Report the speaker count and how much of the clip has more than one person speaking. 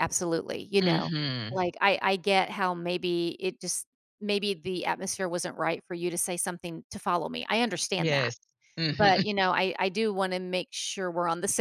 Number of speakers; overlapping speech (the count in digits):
2, about 9%